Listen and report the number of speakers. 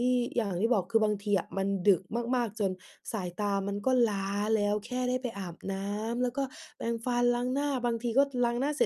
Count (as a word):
one